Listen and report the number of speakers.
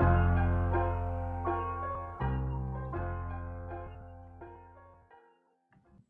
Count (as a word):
zero